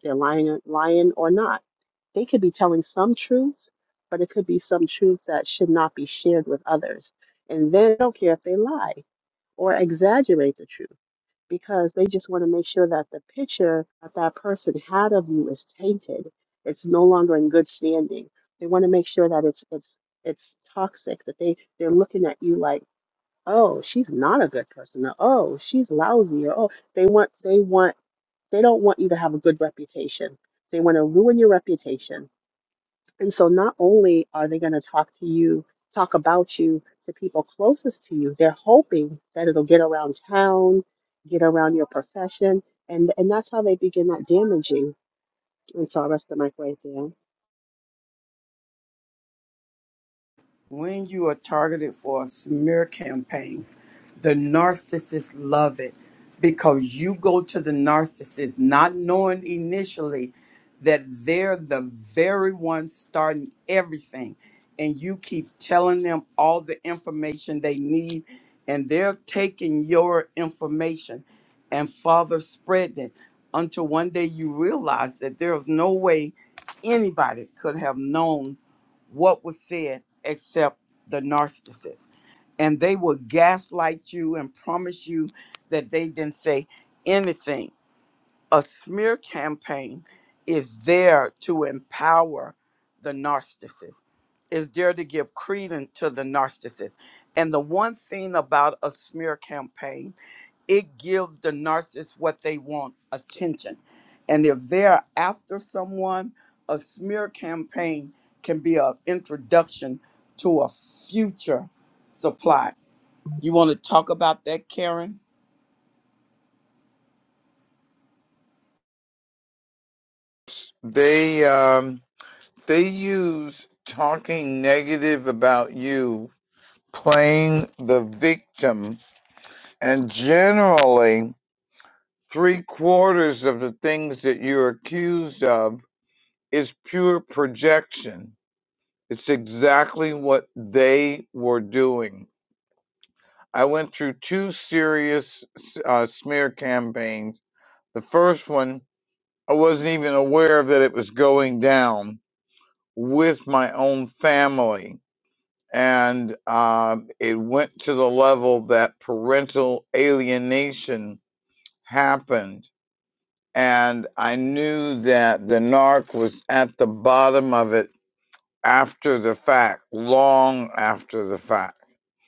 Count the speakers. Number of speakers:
three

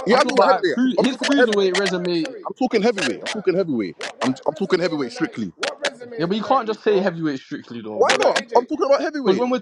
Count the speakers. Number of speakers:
three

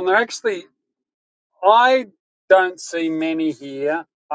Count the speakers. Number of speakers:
one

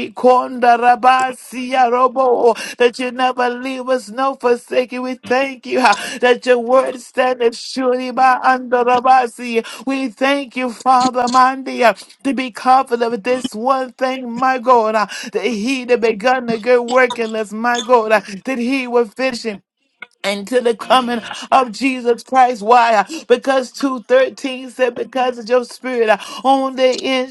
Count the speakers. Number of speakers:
one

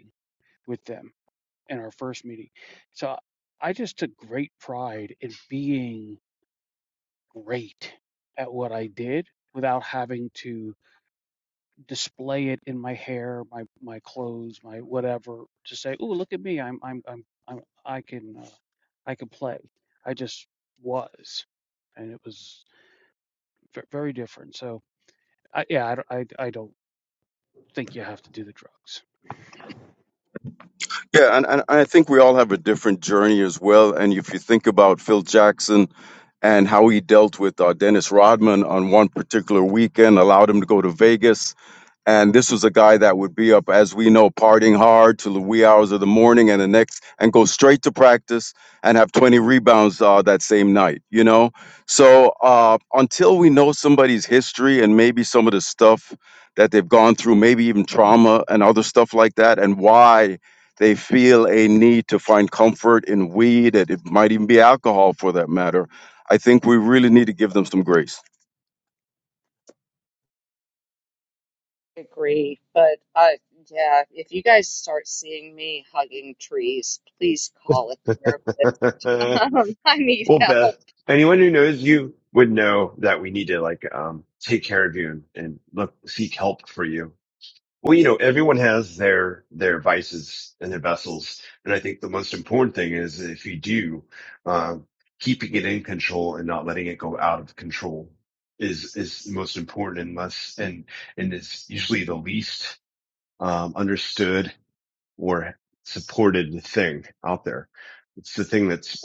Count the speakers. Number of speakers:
four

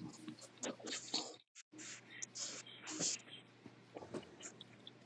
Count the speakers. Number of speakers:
zero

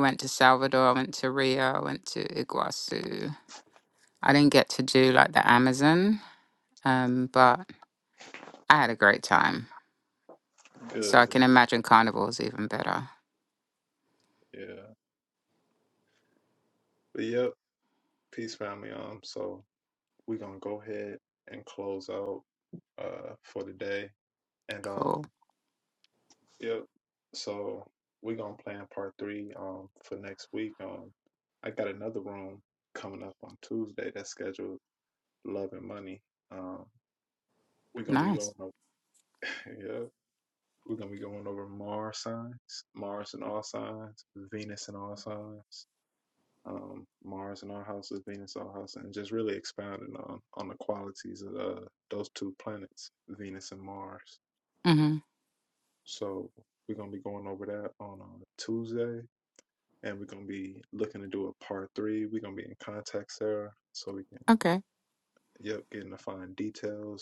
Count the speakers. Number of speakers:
two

